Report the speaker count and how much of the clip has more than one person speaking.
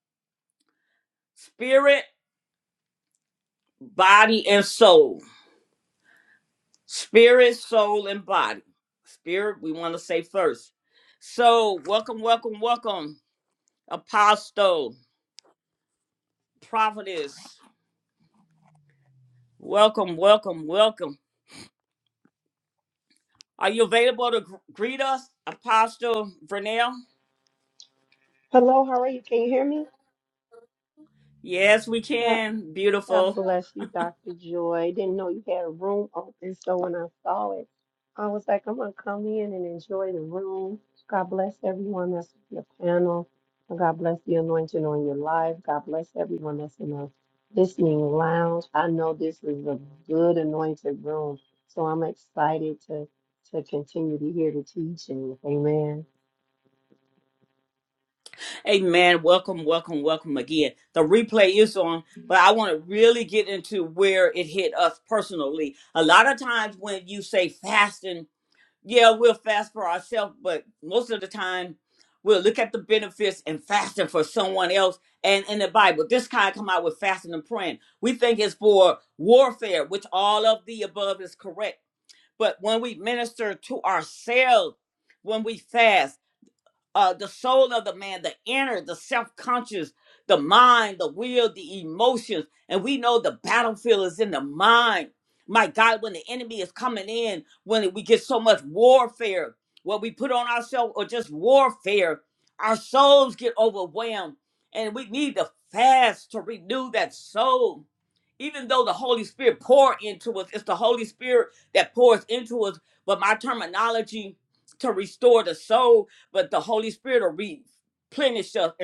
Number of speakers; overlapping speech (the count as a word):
two, under 1%